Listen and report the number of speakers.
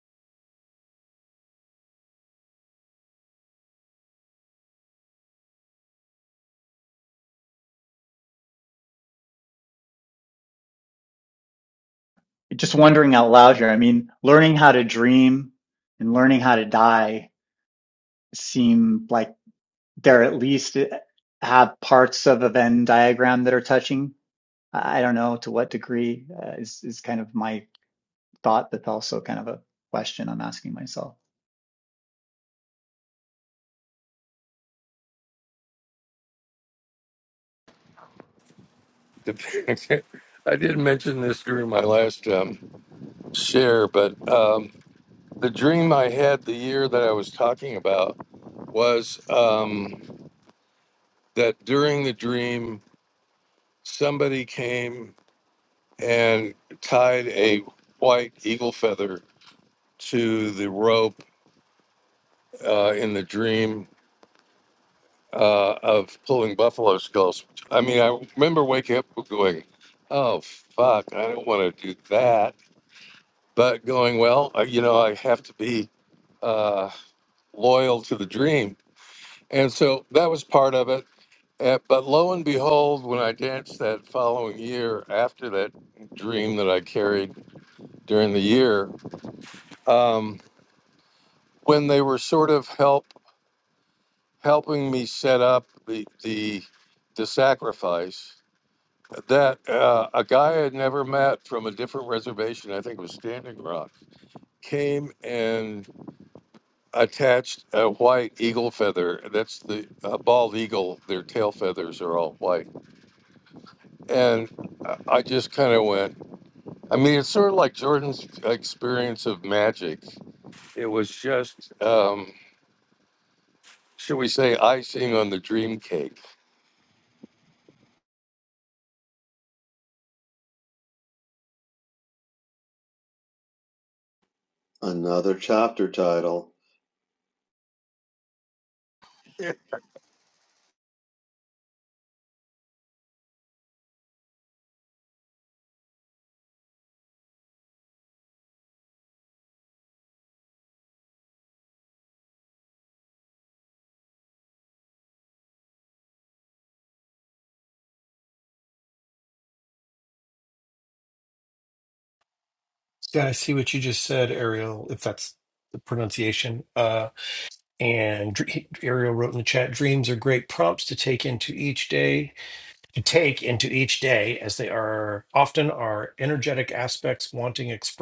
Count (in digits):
4